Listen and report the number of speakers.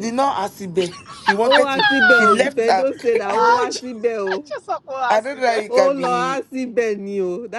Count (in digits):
3